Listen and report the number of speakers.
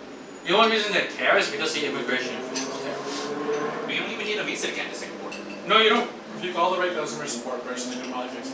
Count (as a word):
three